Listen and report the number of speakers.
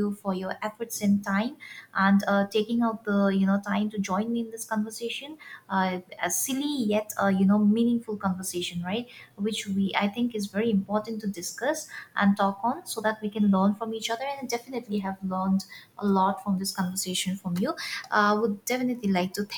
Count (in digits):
1